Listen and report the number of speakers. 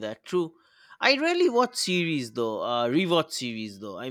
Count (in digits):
1